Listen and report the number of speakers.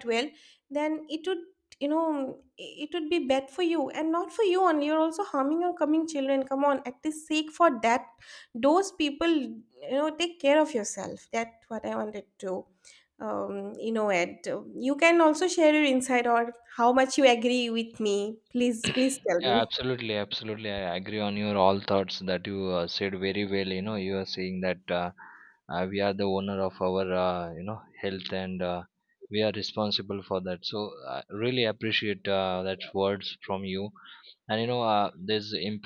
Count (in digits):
2